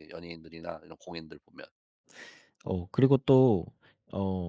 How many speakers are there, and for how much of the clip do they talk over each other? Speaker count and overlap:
2, no overlap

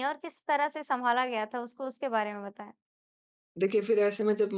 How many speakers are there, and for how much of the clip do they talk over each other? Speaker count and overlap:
2, no overlap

